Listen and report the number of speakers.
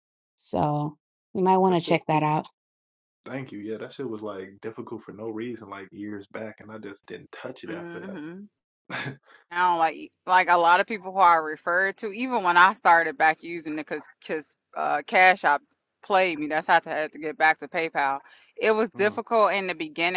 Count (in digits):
3